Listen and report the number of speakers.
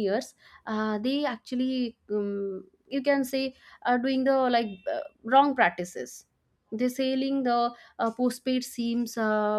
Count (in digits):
1